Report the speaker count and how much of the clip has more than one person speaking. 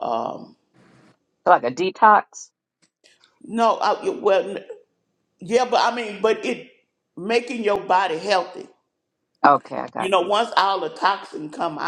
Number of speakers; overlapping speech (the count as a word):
two, about 2%